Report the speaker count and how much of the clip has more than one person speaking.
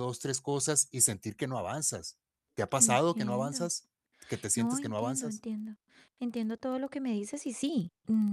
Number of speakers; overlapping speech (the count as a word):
two, about 19%